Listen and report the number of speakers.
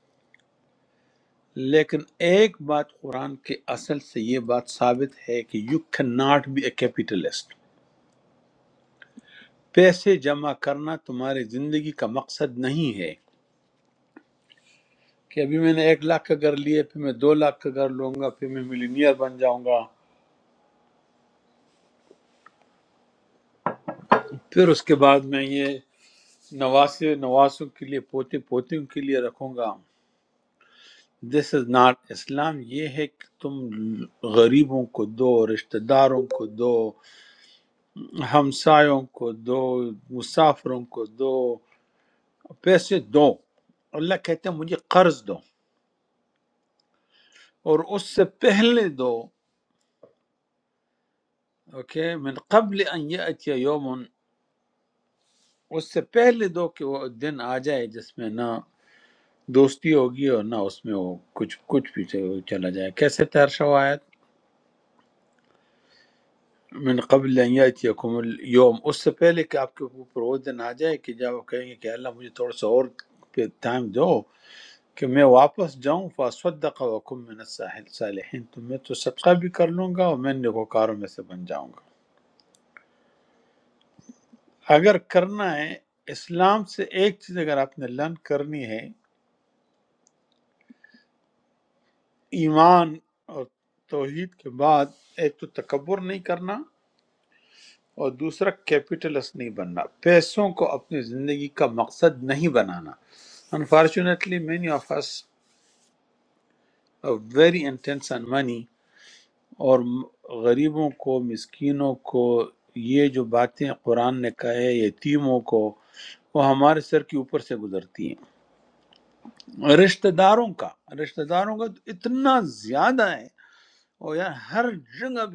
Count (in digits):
1